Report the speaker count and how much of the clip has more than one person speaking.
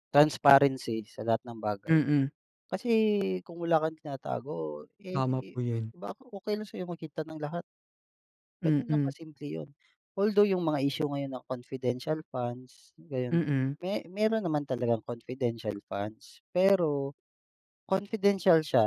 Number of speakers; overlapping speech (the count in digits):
2, about 6%